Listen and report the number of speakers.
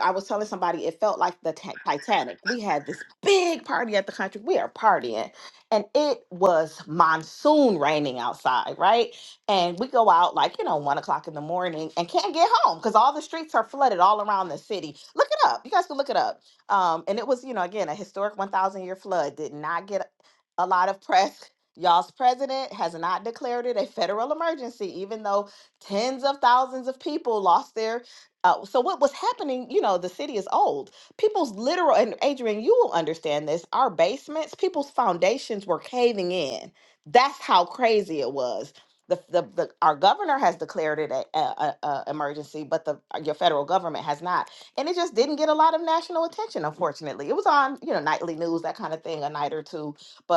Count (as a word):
one